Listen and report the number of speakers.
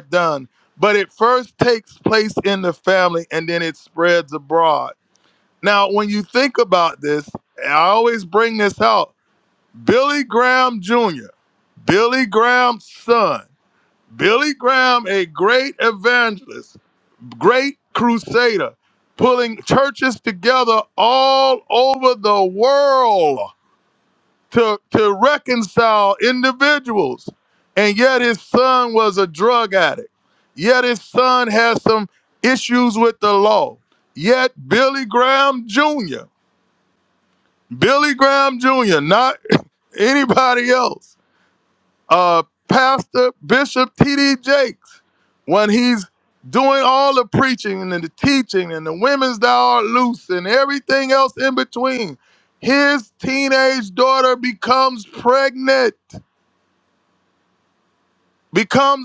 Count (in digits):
1